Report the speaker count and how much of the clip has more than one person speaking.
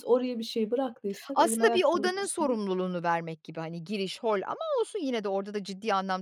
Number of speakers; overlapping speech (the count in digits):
2, about 20%